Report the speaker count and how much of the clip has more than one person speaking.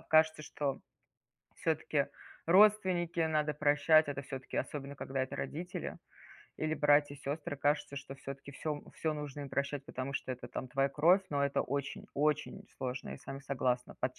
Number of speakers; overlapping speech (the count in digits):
1, no overlap